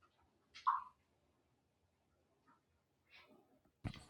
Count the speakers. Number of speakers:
zero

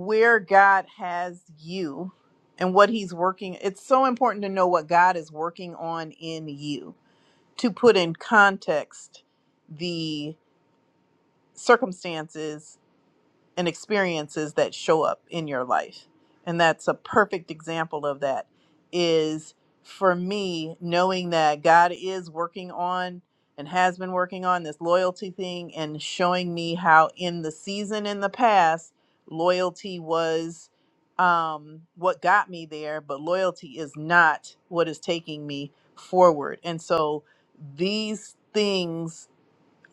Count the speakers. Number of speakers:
one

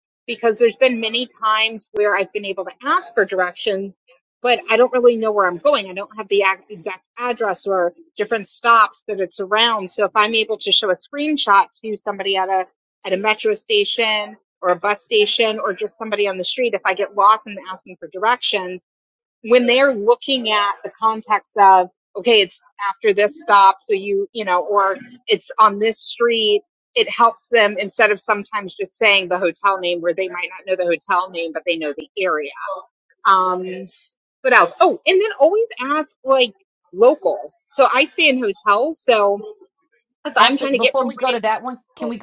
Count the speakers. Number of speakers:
two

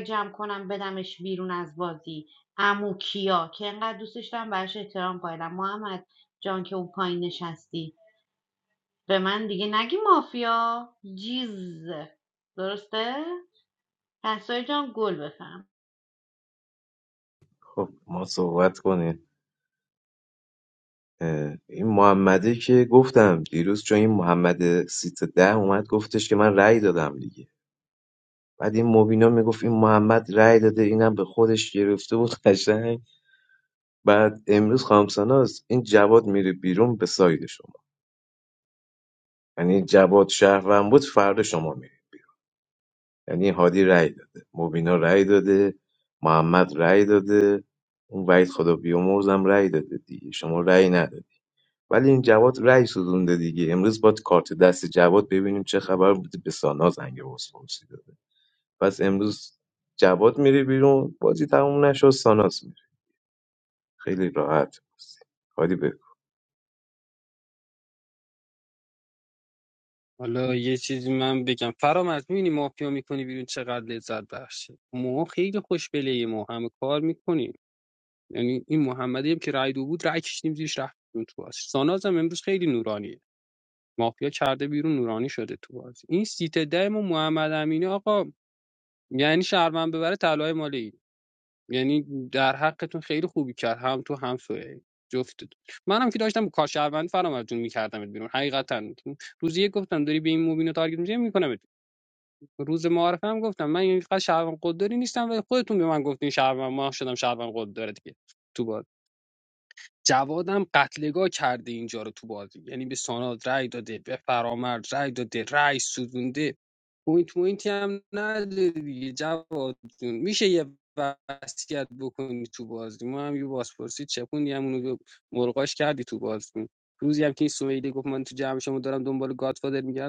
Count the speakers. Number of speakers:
three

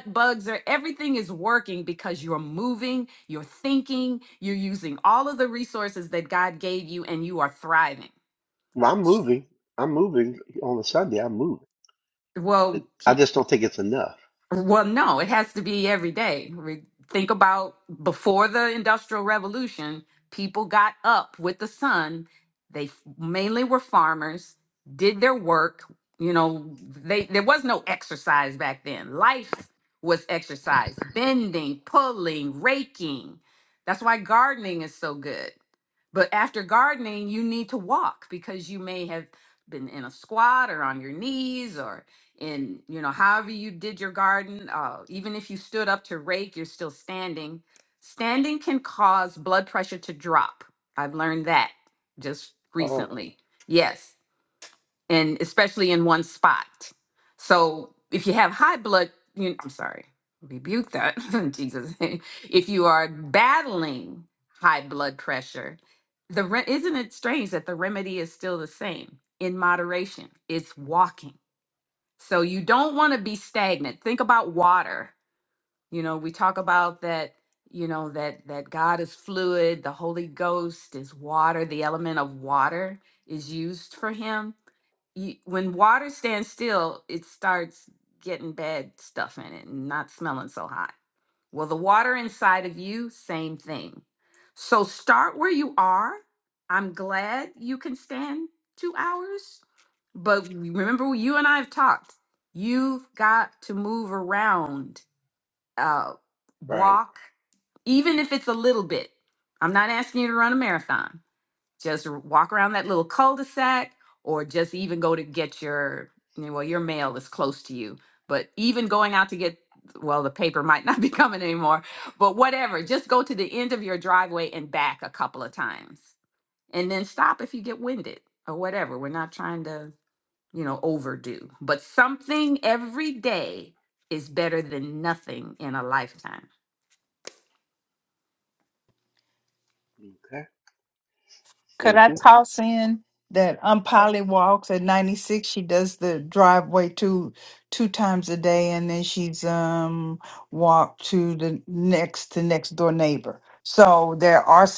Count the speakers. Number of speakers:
three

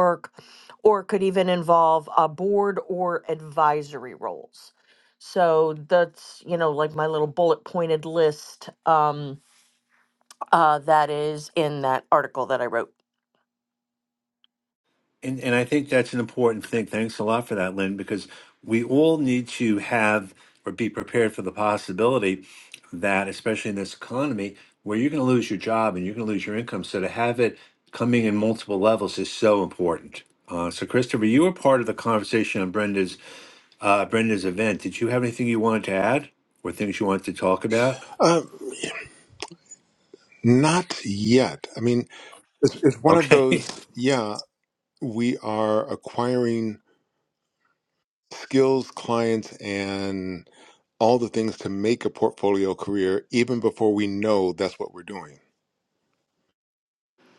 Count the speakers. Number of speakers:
three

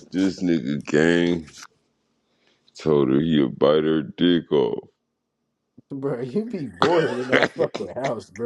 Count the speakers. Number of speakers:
two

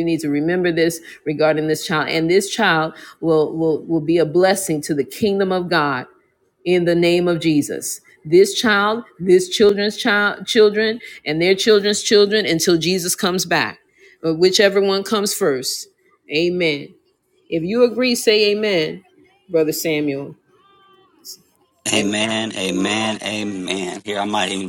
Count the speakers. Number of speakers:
two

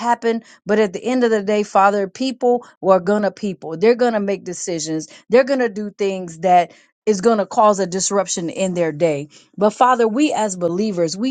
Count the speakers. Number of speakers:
one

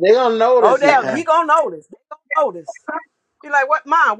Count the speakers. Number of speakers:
two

